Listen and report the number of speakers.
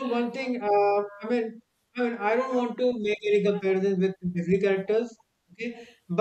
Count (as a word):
one